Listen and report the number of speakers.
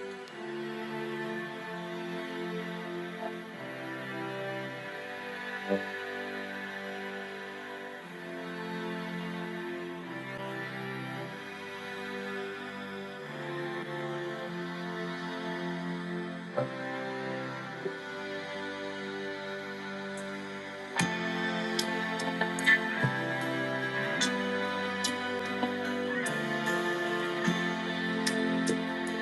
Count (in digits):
0